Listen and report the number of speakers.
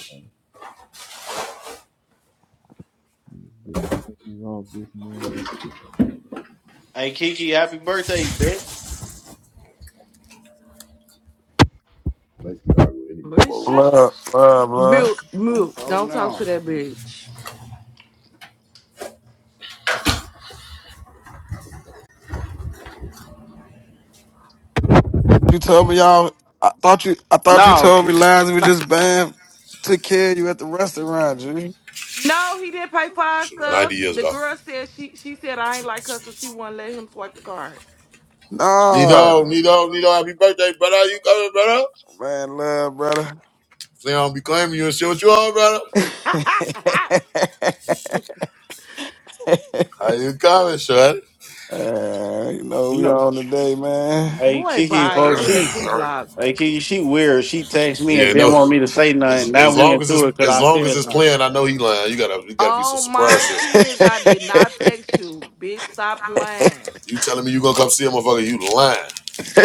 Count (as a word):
five